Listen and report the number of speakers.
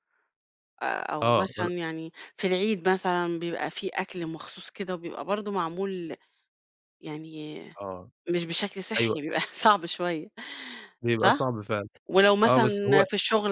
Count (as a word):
two